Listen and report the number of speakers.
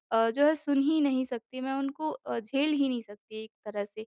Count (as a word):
one